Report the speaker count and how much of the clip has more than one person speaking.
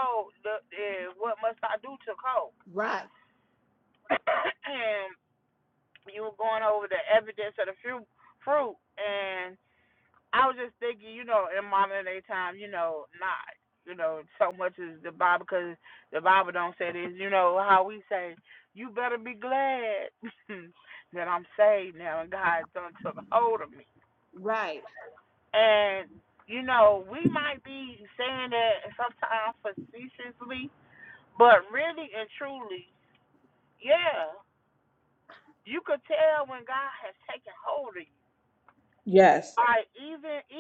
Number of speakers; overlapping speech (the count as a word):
two, no overlap